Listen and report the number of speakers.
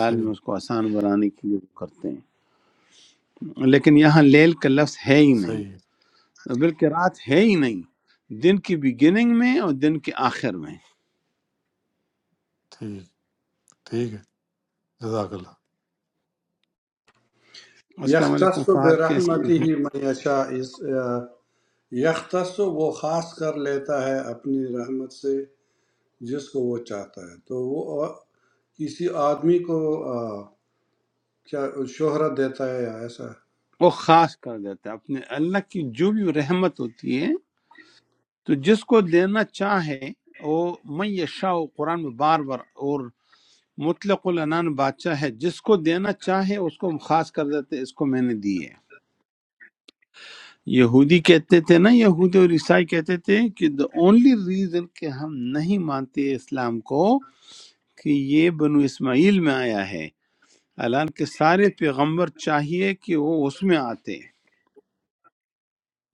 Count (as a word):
three